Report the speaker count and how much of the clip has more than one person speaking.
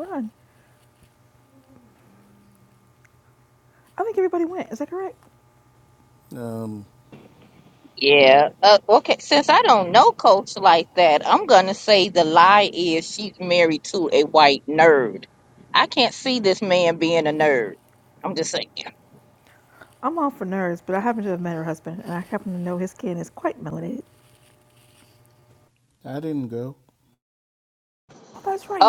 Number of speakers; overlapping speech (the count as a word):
three, under 1%